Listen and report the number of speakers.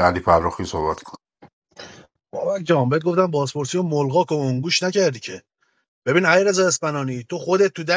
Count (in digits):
2